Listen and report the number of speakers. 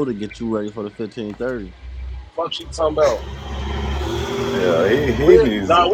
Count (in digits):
3